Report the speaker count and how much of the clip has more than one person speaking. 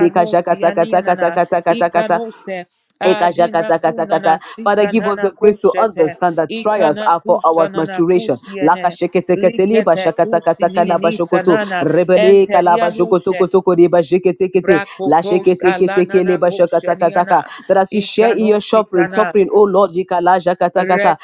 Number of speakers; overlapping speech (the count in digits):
2, about 73%